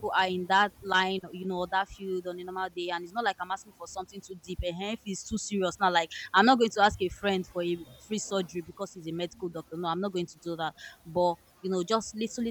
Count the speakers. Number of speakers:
1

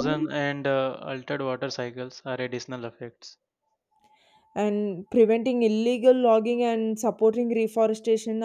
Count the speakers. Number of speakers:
2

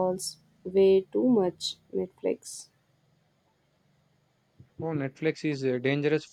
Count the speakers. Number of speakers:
2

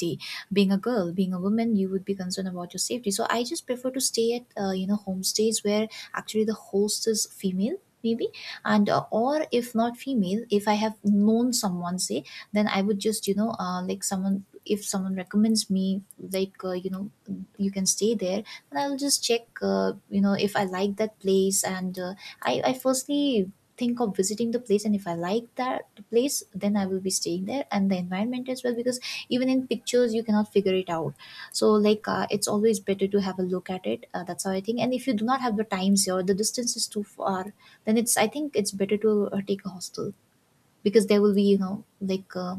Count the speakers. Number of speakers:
1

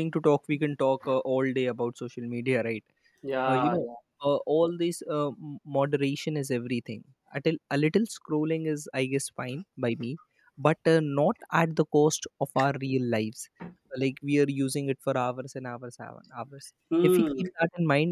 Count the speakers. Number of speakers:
2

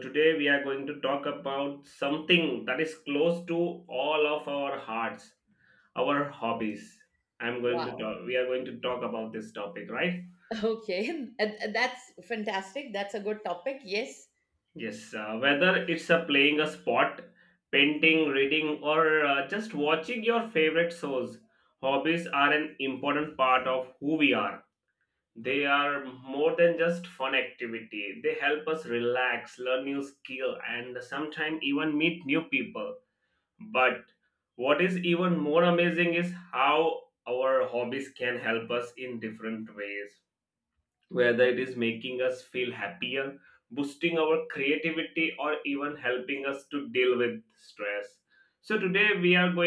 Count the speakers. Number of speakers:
2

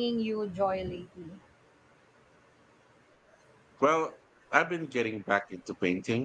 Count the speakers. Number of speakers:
2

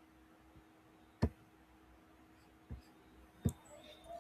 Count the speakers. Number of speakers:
0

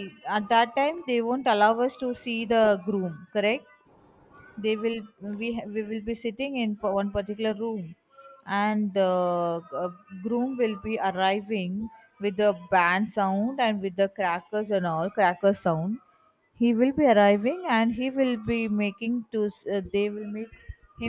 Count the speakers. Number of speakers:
1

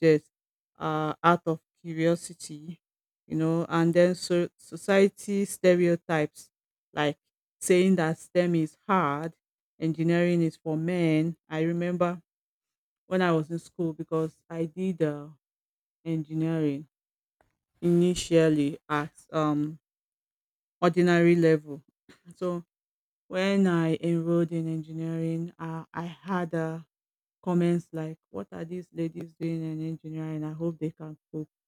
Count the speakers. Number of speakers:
1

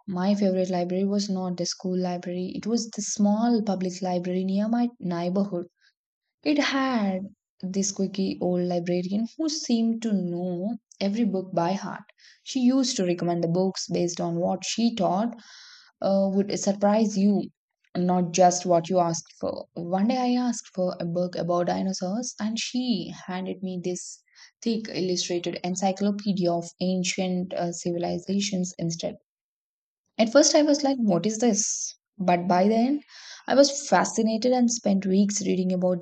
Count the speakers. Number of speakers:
1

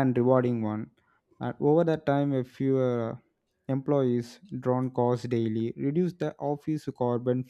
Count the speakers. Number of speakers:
1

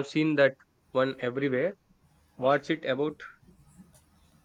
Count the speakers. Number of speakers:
1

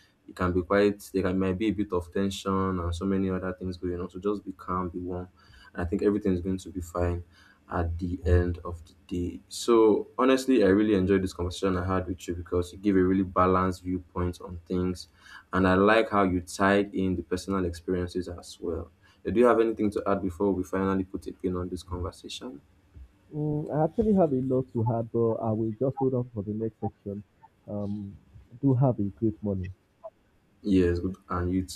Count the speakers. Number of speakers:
2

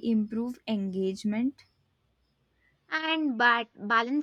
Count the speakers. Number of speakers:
2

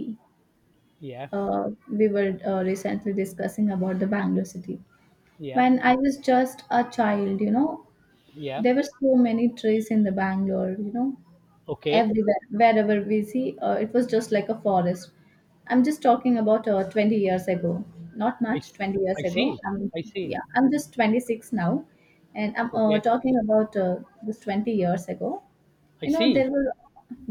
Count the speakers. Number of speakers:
2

